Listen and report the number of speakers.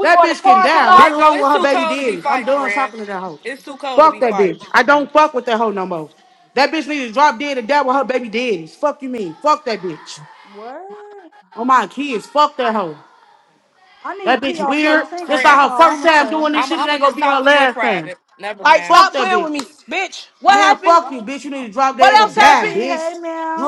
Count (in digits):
4